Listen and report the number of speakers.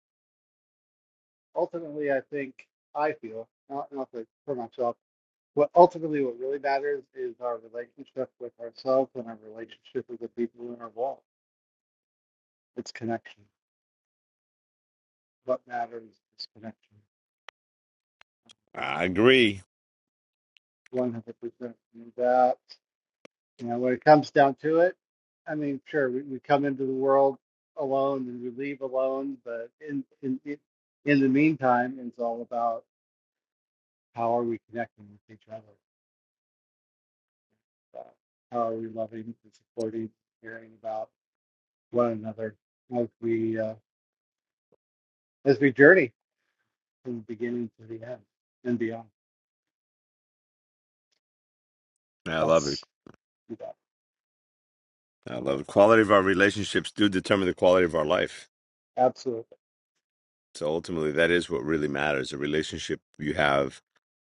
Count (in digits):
2